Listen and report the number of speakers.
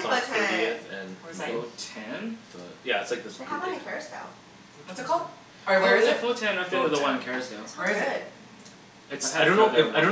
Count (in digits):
4